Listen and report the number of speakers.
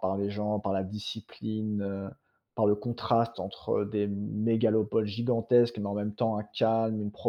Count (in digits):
1